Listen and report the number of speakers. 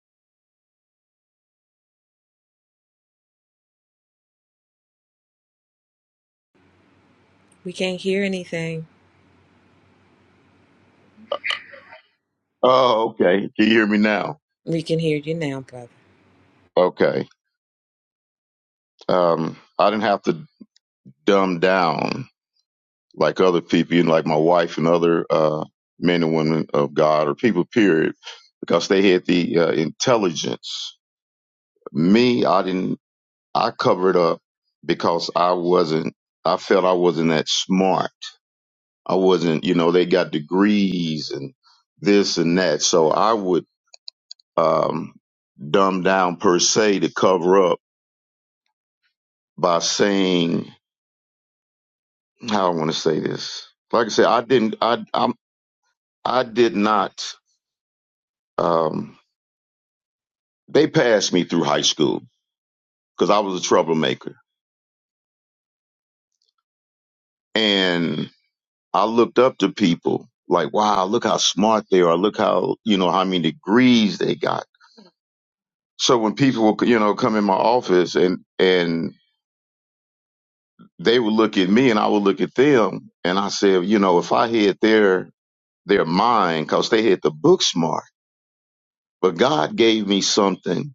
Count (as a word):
two